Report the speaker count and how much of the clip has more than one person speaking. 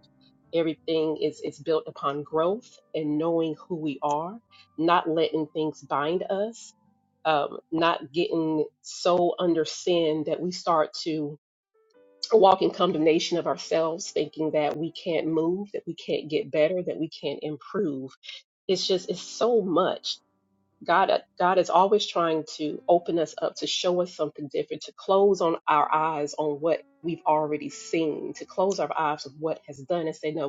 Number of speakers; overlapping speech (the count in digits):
1, no overlap